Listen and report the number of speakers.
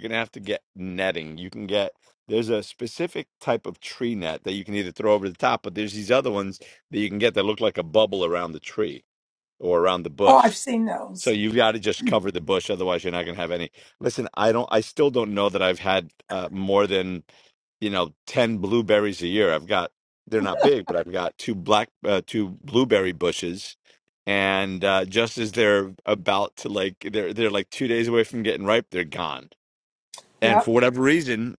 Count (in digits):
2